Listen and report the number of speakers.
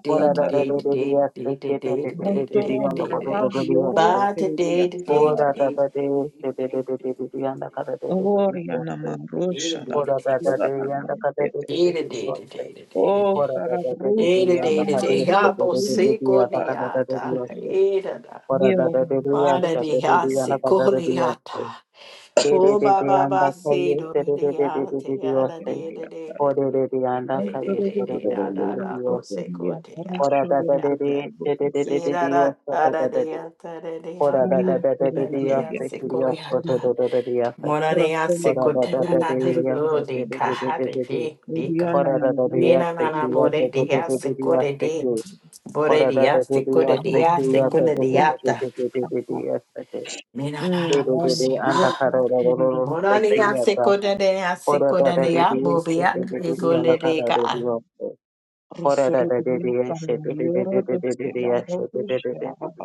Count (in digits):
3